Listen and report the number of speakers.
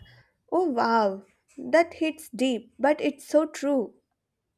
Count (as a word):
one